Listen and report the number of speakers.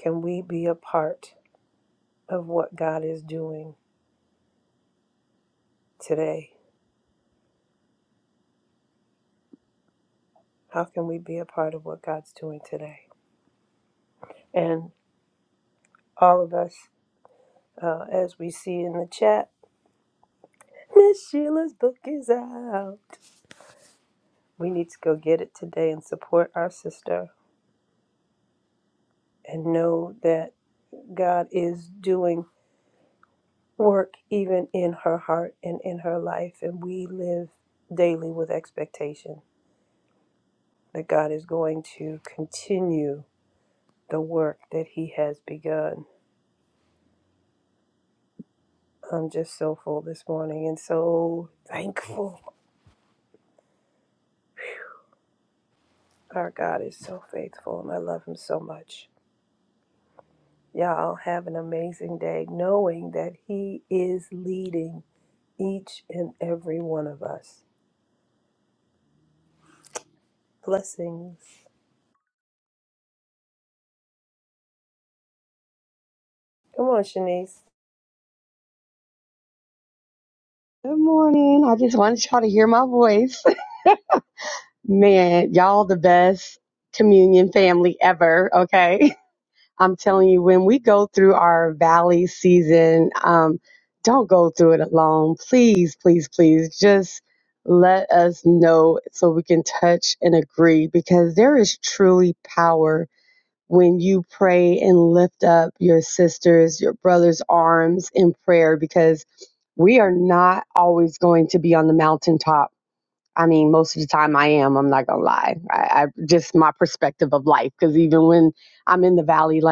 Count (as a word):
two